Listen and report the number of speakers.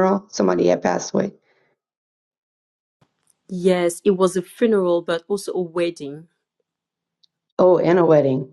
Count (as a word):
two